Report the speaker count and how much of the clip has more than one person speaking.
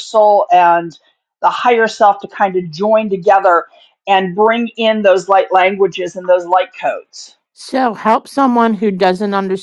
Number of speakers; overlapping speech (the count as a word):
two, no overlap